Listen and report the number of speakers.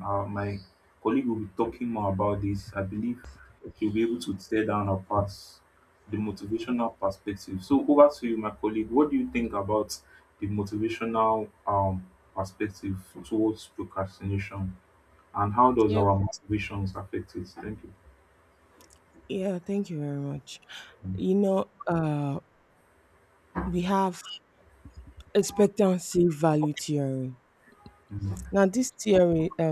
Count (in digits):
2